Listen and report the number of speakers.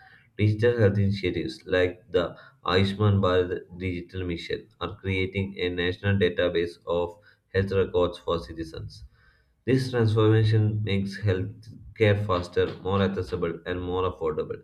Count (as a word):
one